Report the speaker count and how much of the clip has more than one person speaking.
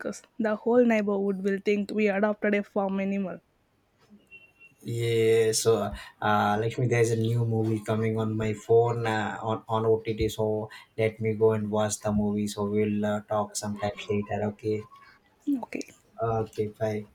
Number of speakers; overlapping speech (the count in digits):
2, no overlap